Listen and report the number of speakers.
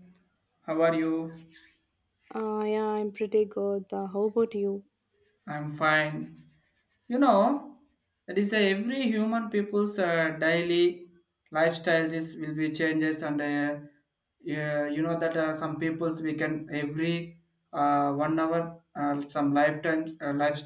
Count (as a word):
two